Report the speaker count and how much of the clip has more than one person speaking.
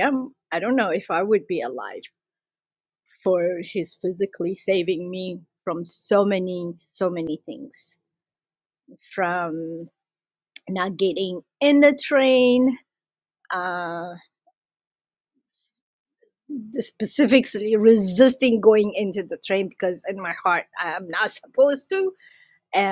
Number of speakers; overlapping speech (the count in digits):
1, no overlap